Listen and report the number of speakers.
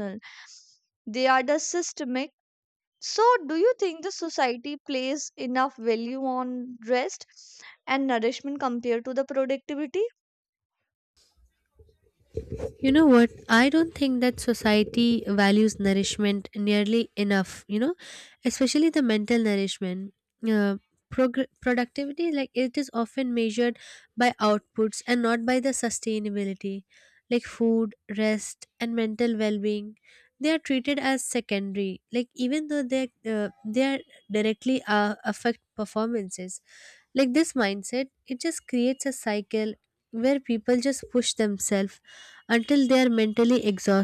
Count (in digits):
2